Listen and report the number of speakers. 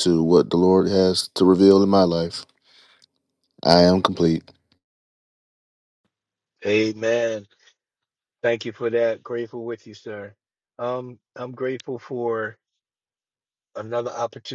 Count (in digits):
2